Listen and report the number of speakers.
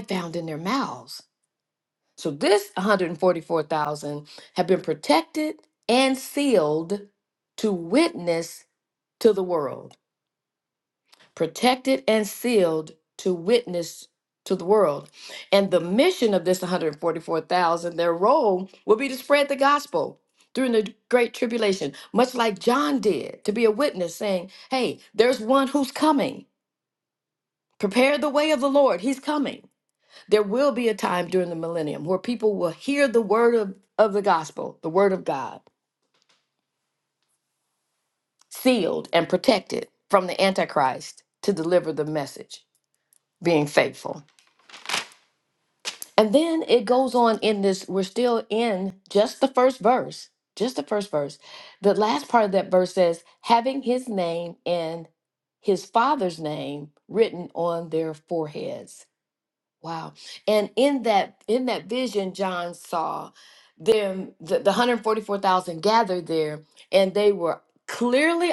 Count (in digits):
1